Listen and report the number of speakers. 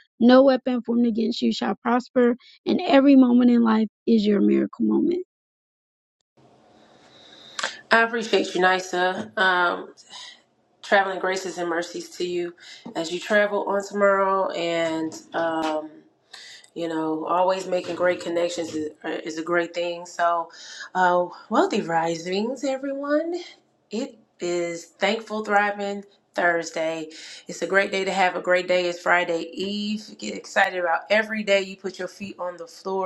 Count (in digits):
2